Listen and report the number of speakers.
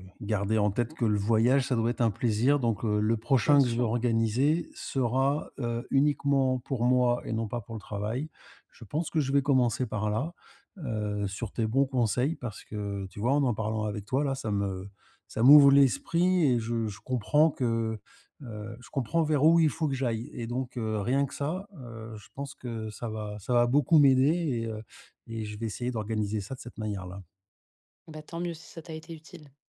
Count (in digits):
2